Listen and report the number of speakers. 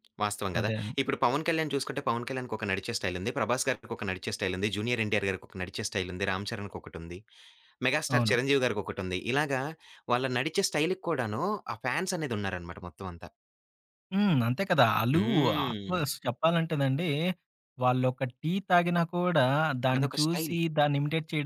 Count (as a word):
two